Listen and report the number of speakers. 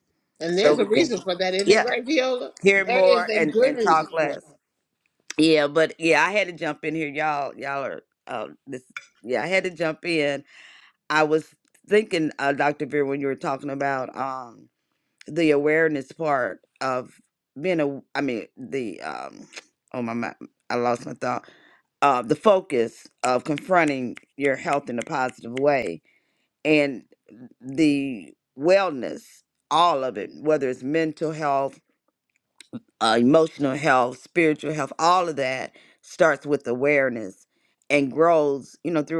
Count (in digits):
2